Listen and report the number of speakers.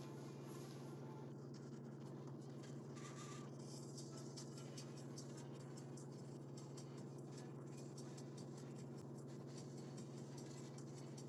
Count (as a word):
zero